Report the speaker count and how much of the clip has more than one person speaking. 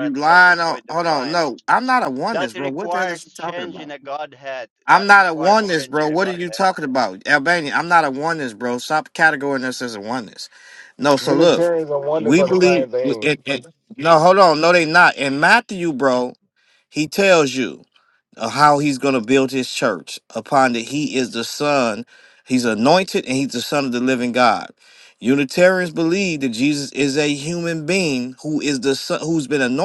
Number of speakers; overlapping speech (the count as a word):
three, about 20%